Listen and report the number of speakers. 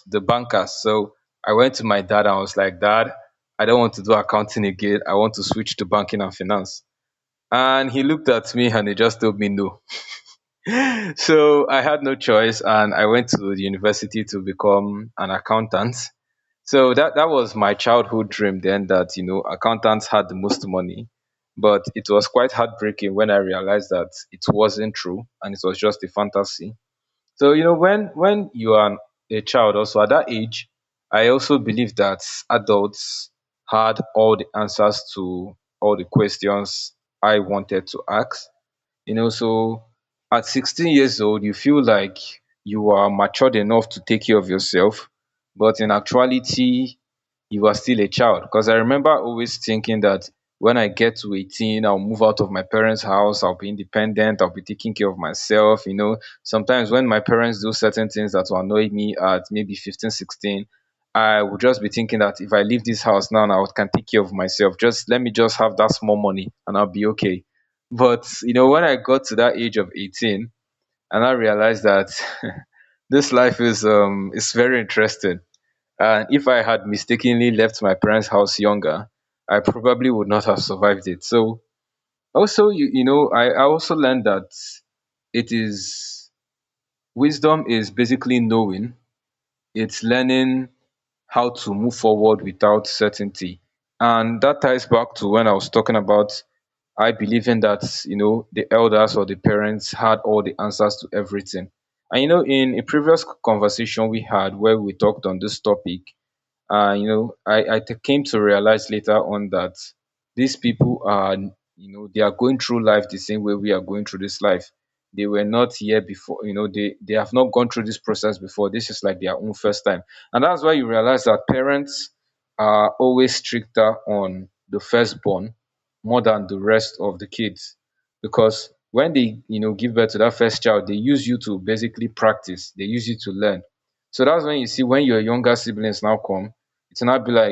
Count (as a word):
one